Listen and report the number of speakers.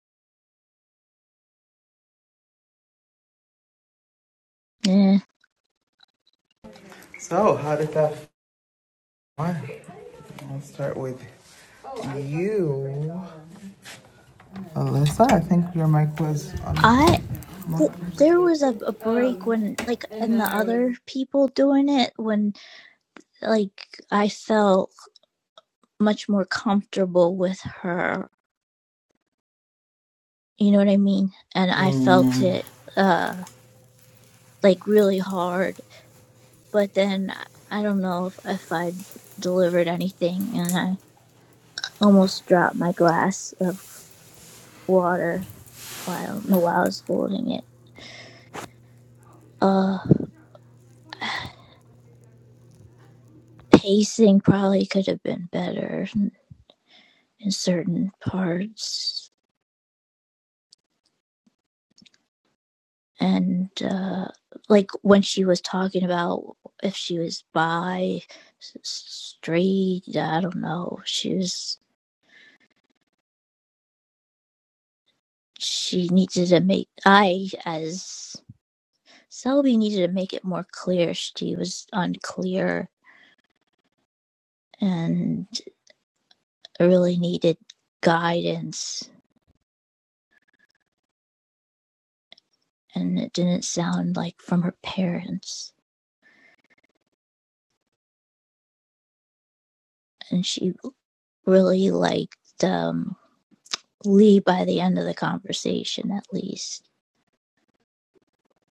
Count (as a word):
two